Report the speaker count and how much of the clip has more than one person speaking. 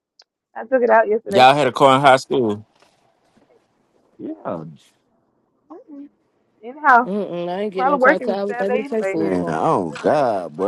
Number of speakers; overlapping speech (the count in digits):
4, about 18%